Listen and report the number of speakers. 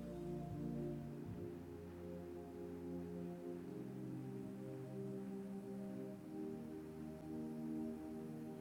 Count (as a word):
zero